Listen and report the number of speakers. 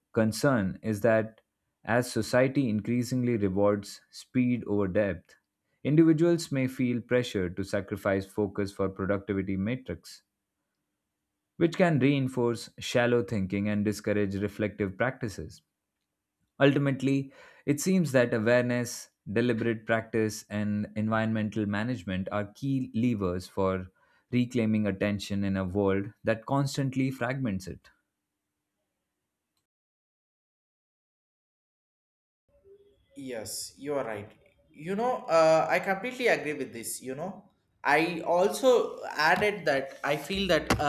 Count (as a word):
two